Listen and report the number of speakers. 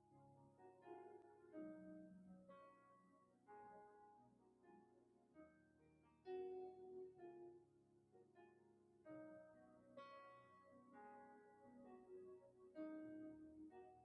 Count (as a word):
zero